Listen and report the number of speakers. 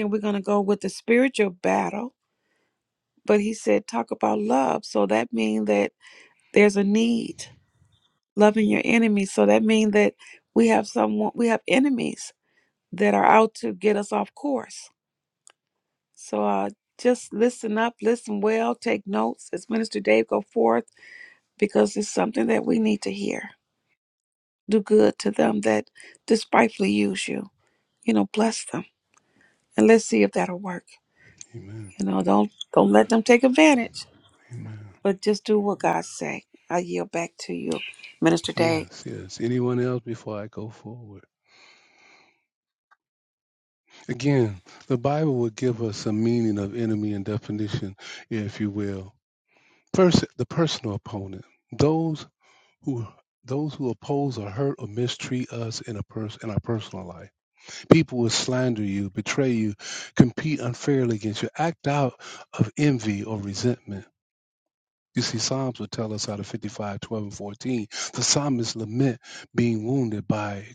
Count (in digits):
2